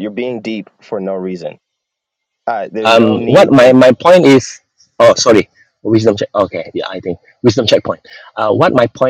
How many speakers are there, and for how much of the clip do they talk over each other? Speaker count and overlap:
two, about 10%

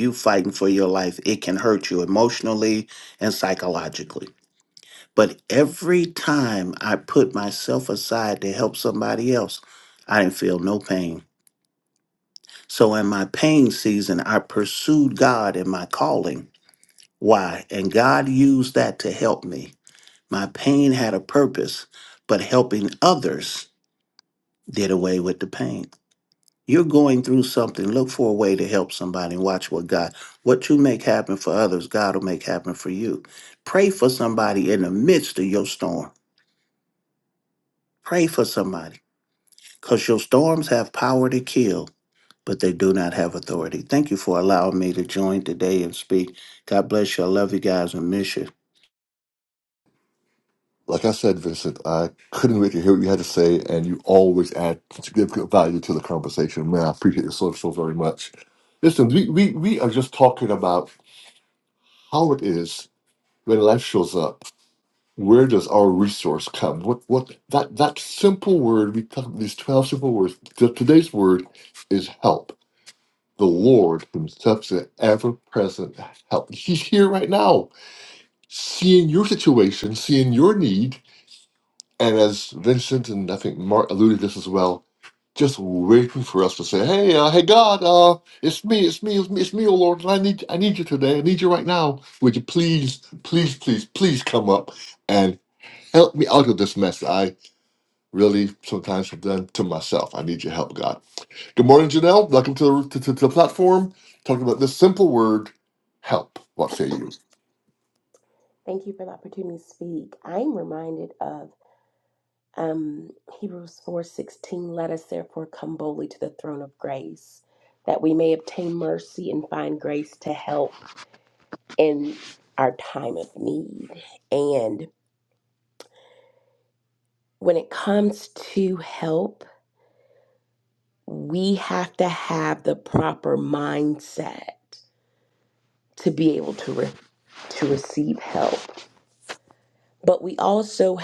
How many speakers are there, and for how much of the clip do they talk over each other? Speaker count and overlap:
three, no overlap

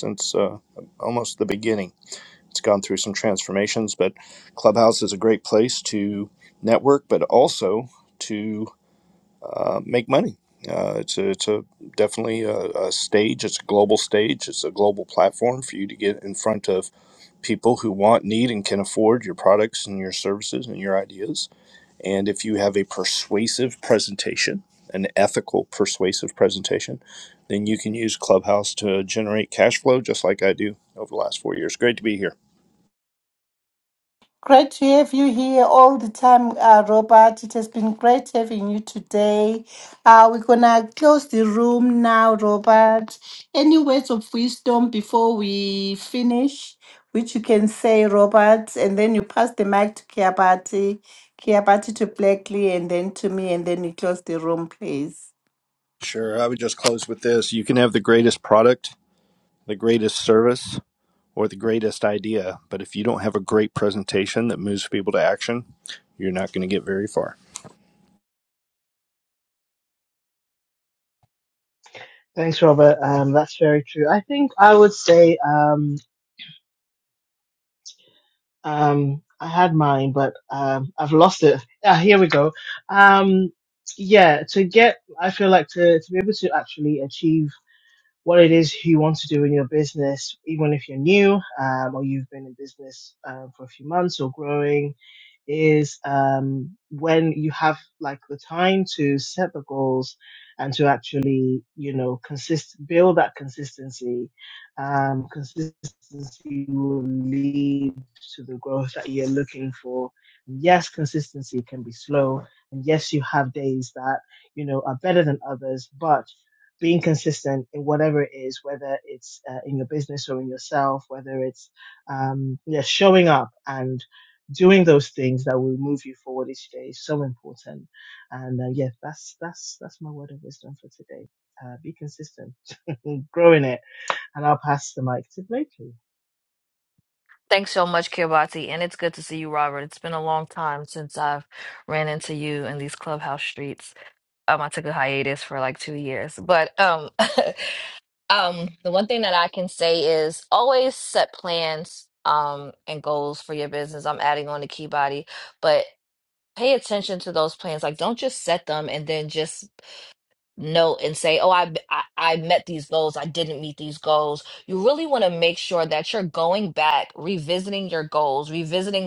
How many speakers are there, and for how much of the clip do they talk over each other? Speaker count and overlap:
four, no overlap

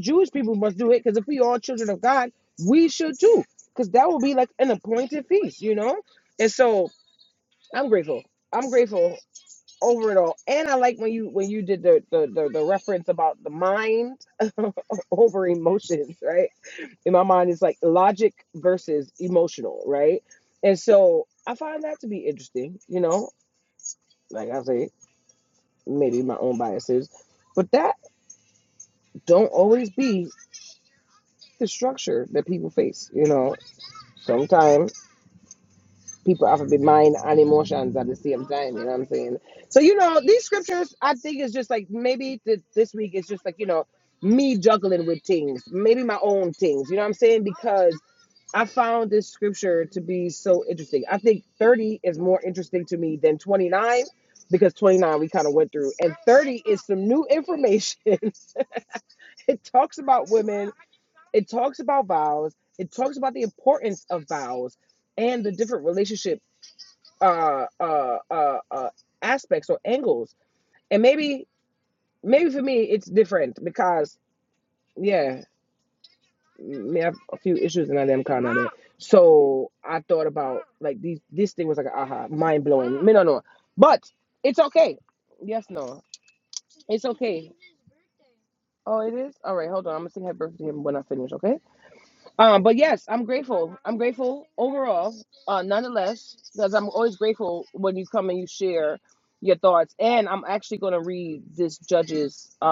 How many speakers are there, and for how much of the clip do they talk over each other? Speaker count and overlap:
one, no overlap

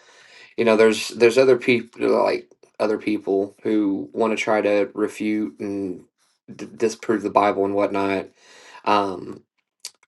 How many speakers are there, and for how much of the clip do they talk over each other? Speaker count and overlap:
one, no overlap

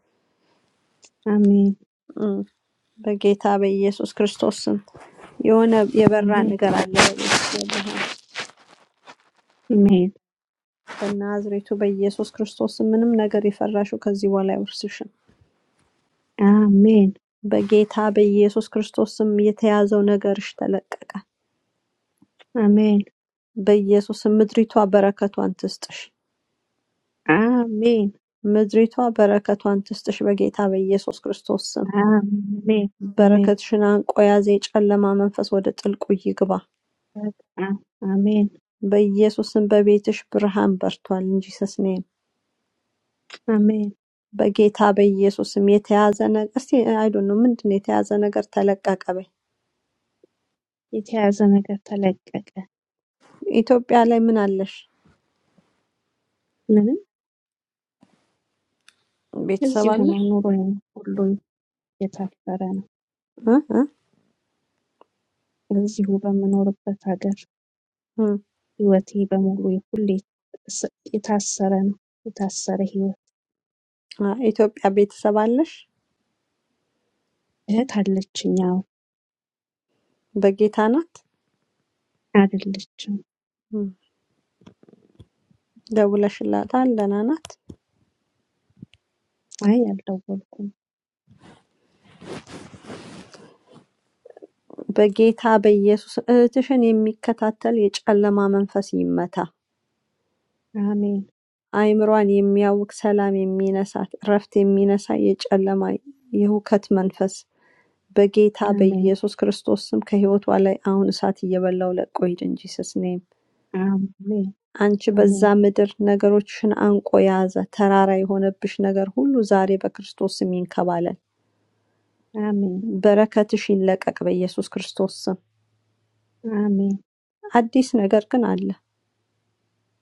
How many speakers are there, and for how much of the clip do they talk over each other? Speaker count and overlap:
two, about 2%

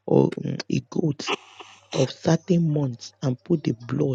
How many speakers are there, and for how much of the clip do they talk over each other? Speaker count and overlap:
one, no overlap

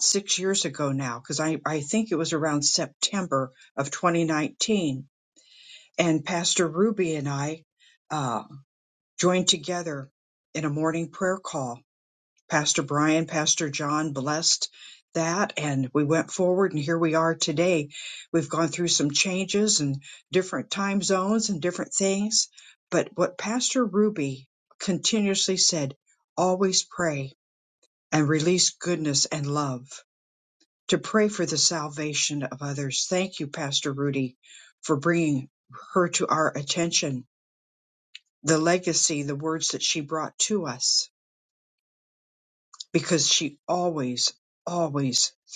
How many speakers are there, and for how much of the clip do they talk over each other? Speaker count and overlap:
one, no overlap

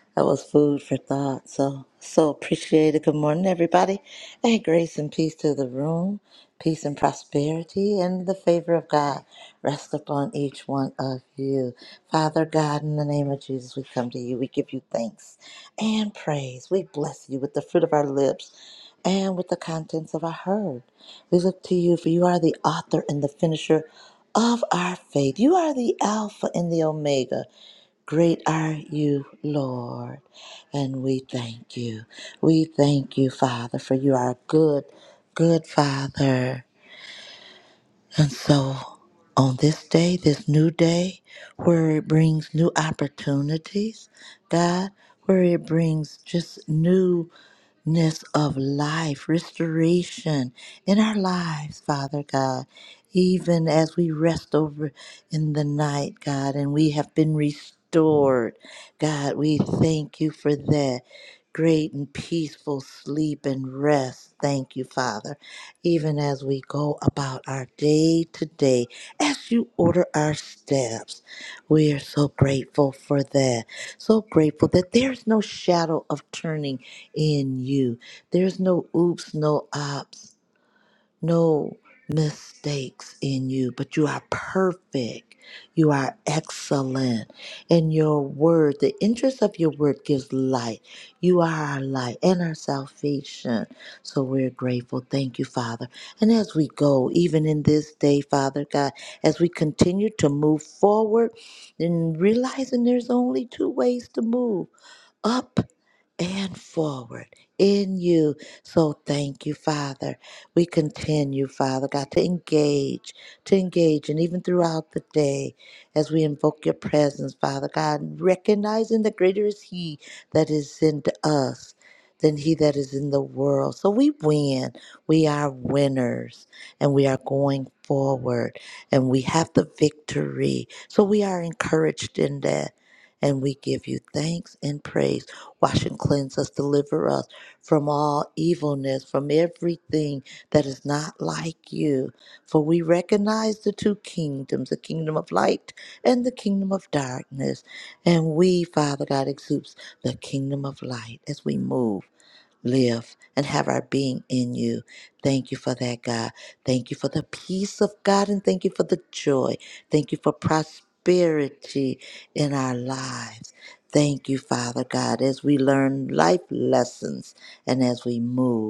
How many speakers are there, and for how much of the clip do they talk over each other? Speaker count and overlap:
one, no overlap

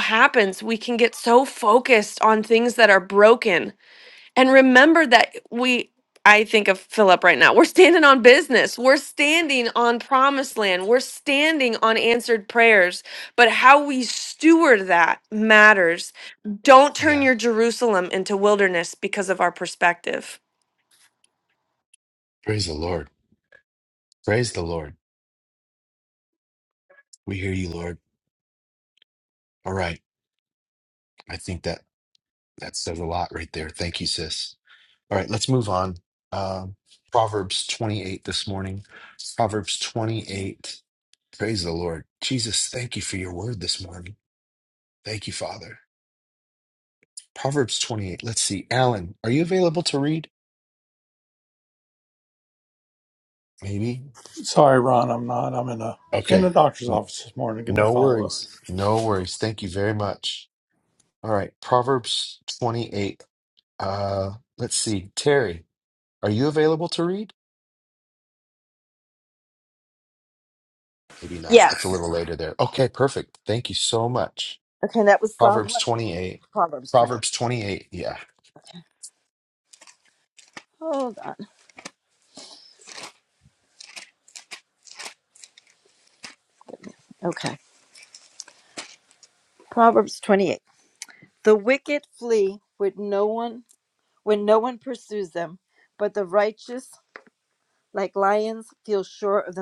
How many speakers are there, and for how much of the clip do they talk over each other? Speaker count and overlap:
four, about 2%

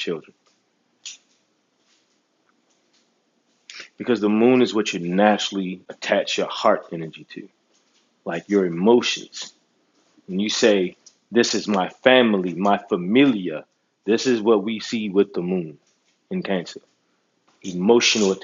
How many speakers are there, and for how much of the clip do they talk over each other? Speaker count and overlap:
one, no overlap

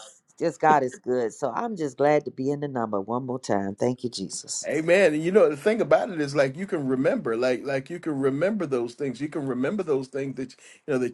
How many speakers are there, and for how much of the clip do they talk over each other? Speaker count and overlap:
two, no overlap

